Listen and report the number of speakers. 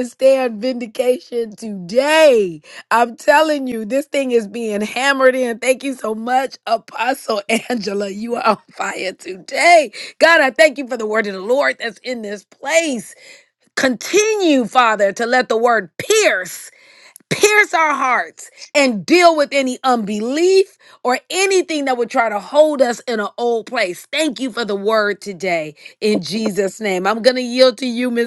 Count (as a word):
one